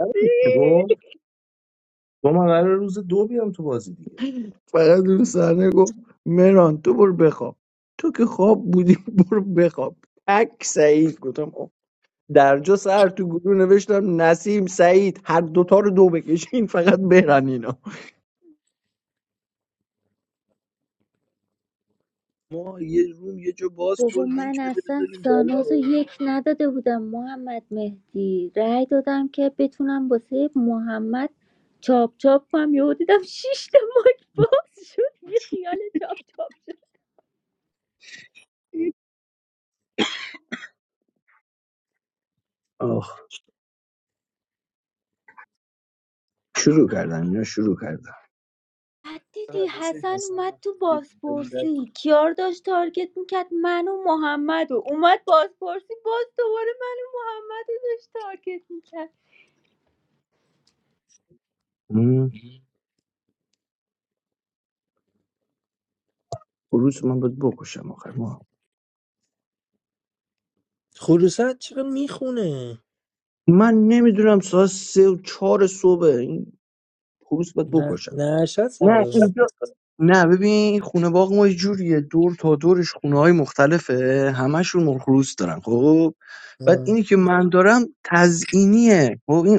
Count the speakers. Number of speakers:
4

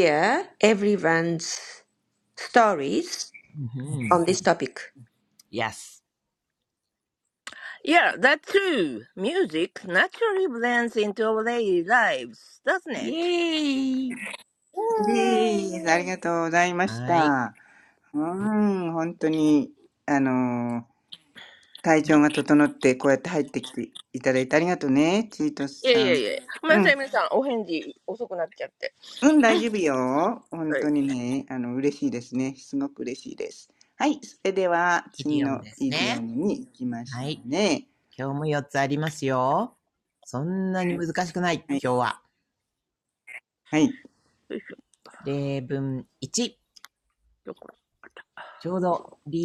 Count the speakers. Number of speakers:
4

